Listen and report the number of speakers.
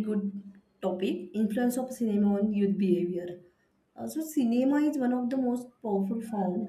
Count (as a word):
one